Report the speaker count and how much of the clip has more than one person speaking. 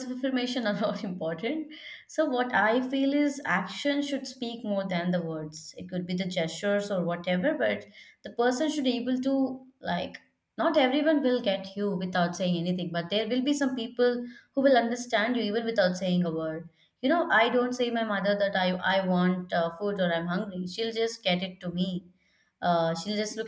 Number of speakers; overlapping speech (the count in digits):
1, no overlap